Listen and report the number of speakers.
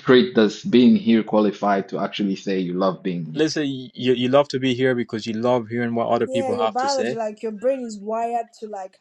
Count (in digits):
3